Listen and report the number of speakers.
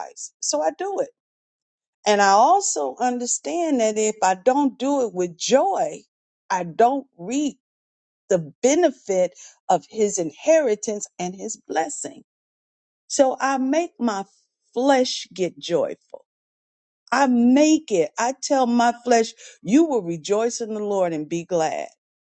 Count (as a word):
one